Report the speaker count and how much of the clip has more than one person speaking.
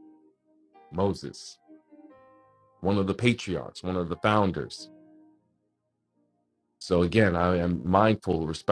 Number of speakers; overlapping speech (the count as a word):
one, no overlap